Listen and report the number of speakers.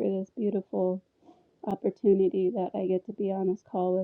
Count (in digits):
1